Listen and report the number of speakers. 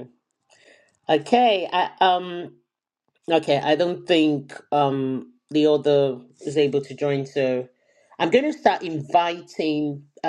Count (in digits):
1